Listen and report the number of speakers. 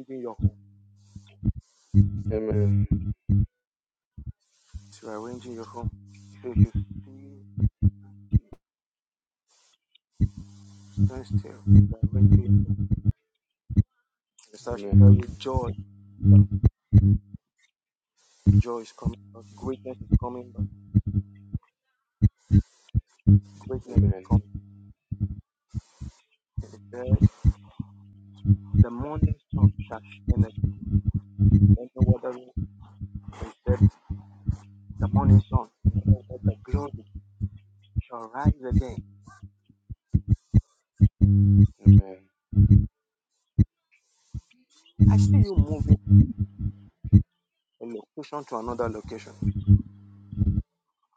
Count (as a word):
two